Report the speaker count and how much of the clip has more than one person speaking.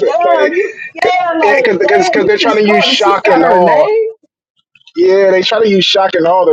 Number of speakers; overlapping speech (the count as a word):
two, about 47%